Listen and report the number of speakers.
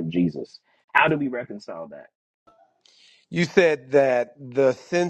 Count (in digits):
2